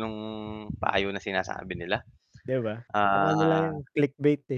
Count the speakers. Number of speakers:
2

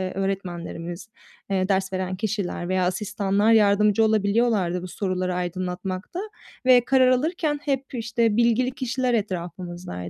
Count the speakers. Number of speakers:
1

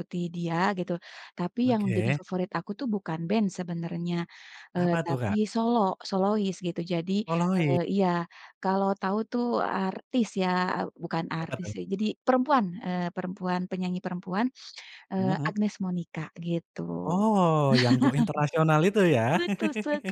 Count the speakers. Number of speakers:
2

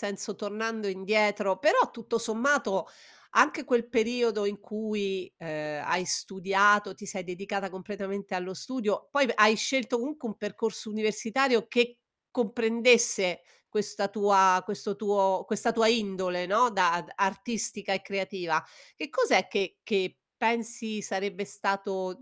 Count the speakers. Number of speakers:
1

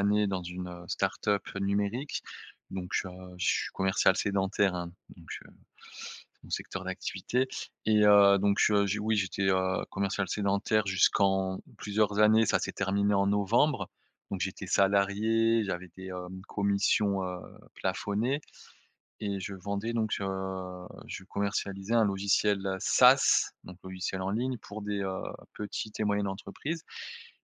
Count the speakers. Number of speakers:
1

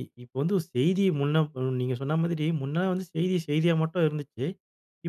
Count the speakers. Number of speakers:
1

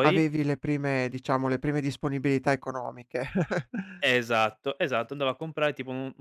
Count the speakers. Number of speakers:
2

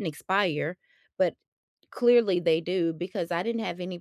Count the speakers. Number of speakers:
1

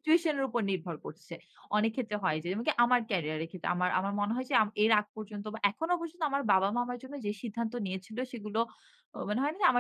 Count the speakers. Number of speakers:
1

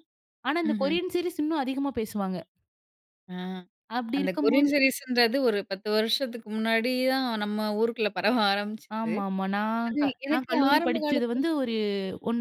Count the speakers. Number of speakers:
2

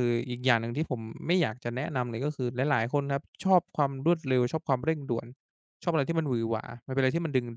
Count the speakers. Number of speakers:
1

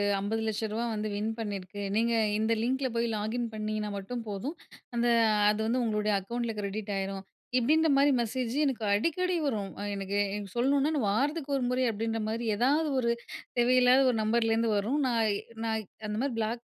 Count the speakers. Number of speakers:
1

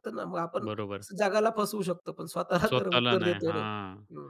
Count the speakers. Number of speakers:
2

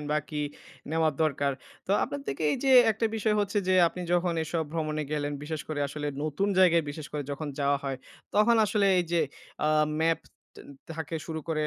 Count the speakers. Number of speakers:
1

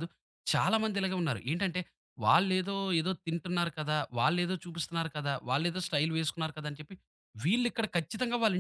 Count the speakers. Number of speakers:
1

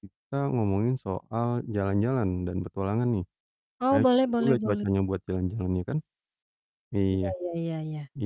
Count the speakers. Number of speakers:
2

